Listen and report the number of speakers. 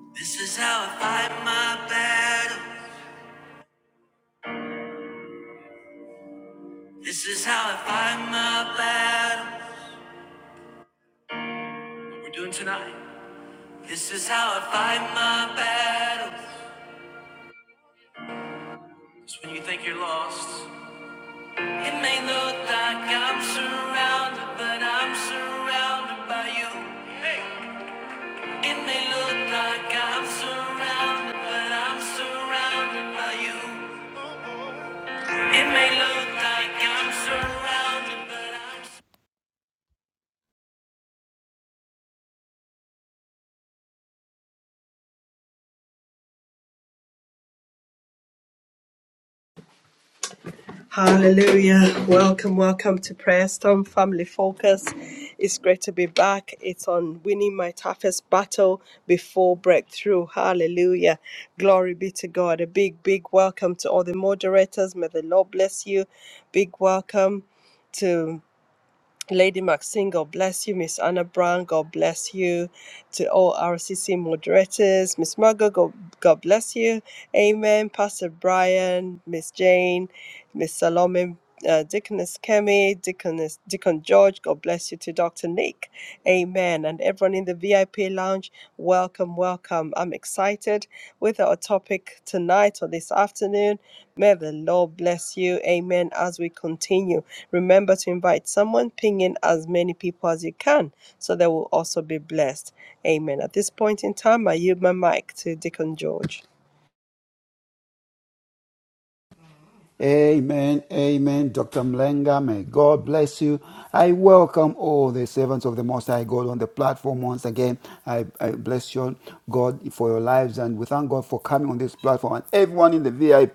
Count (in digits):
3